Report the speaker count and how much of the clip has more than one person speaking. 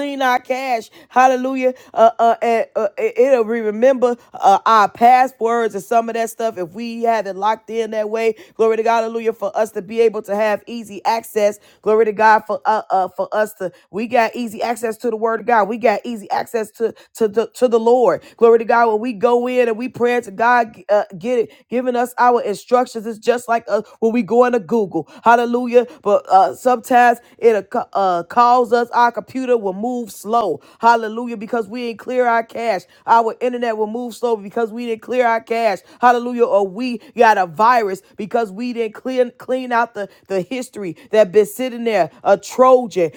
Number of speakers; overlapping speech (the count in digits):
1, no overlap